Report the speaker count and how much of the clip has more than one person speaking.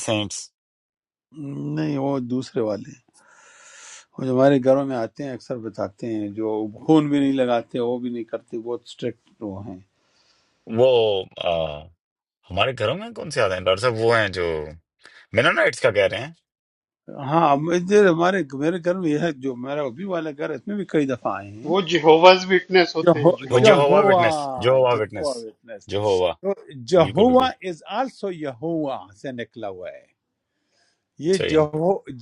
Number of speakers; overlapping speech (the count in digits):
3, about 7%